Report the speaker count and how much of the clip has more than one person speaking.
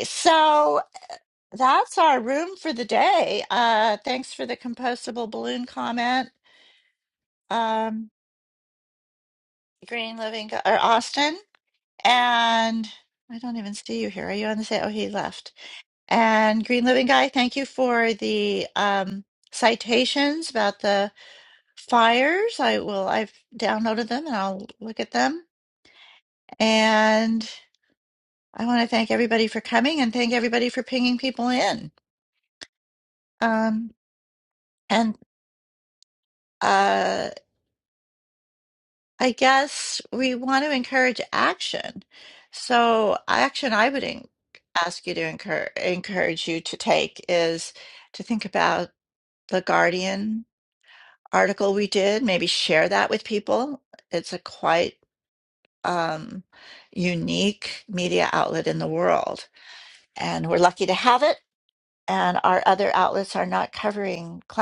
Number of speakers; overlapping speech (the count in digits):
1, no overlap